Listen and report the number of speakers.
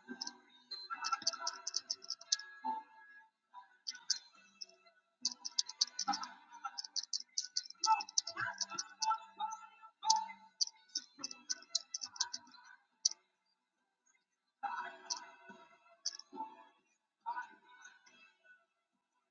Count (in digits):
0